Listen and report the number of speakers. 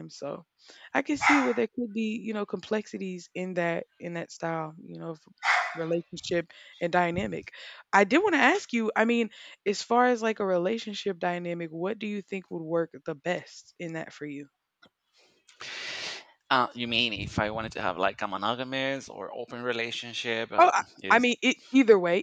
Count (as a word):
two